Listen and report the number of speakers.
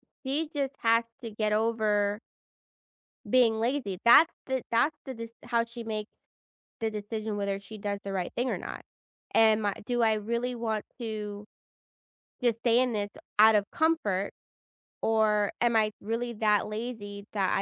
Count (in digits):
1